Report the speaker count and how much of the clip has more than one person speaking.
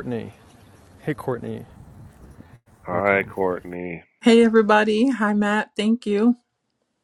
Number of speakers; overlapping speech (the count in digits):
3, about 6%